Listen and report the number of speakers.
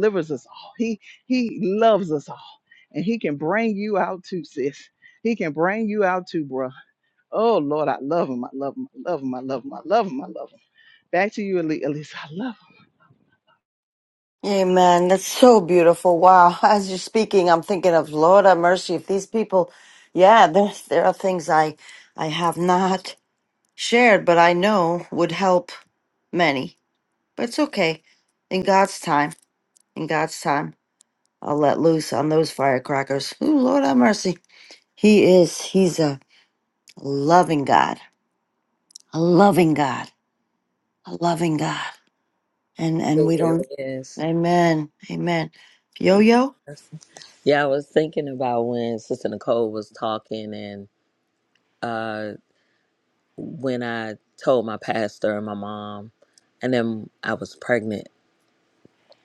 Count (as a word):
three